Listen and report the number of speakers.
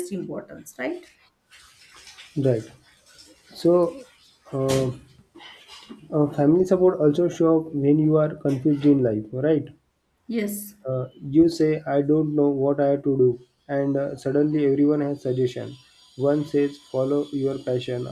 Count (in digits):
2